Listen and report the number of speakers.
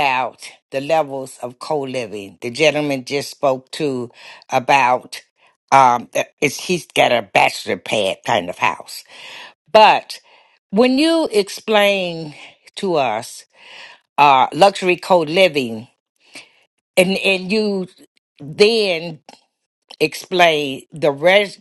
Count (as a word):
one